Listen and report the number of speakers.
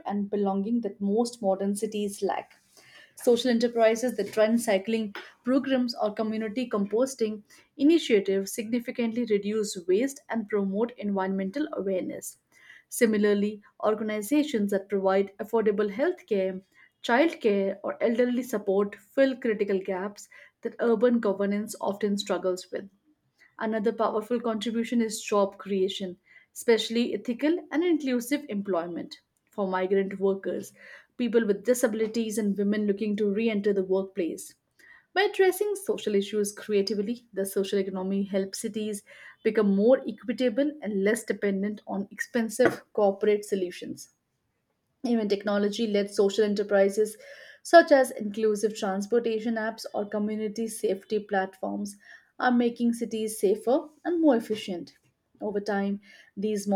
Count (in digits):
1